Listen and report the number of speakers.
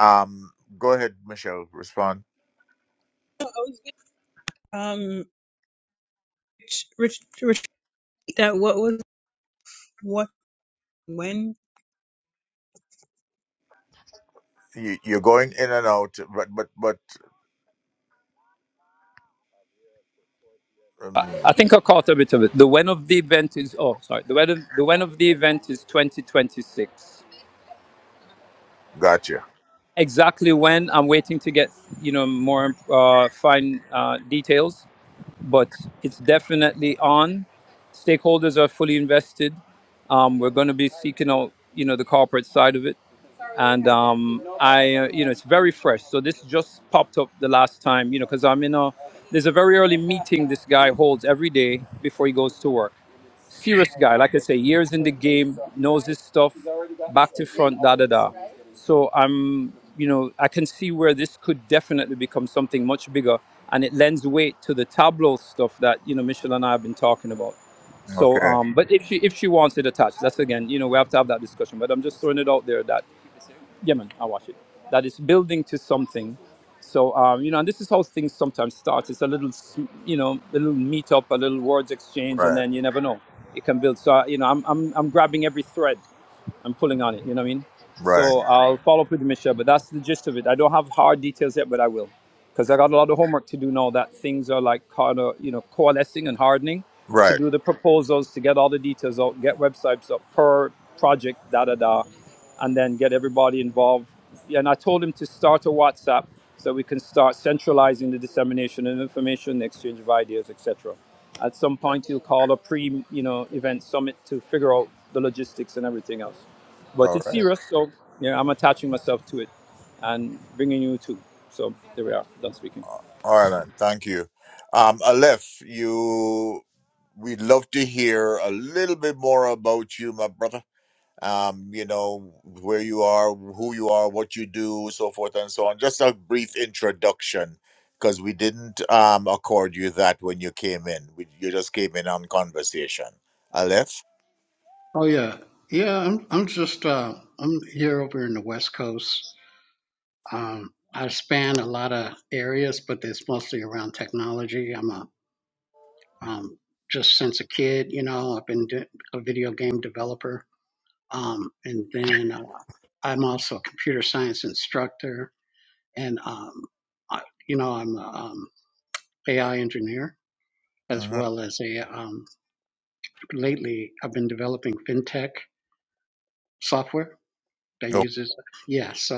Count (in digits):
4